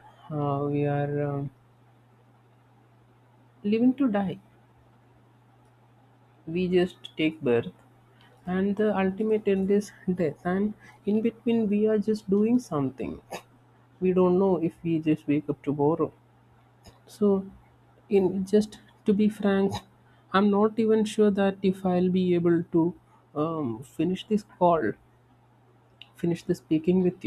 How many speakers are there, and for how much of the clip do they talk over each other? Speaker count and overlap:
one, no overlap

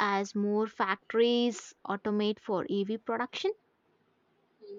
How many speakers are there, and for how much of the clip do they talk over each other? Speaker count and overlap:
one, no overlap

